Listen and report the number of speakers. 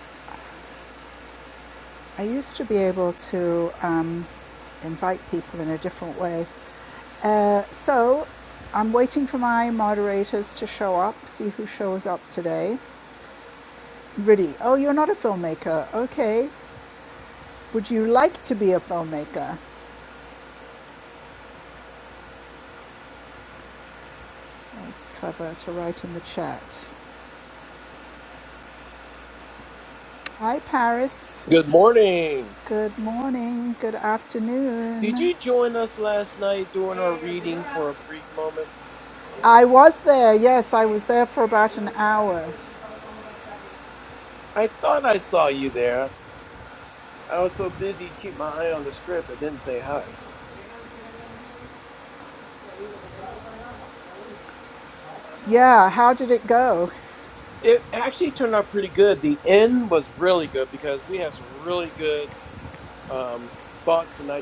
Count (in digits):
2